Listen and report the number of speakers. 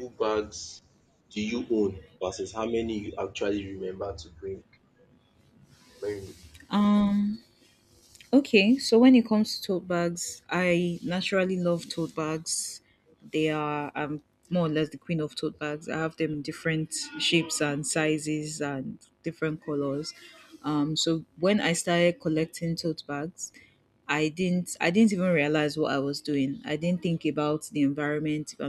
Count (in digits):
2